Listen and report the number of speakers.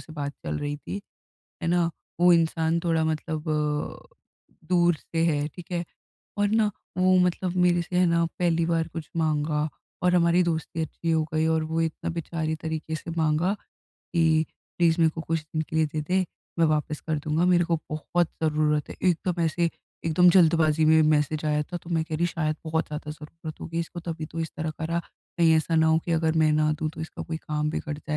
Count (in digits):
1